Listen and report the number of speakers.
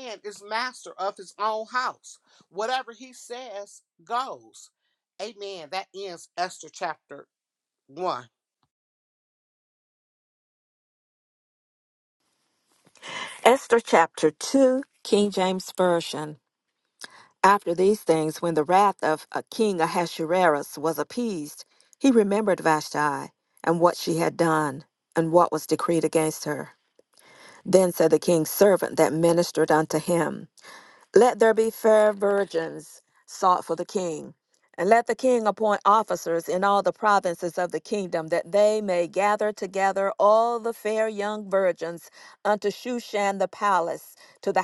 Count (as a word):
two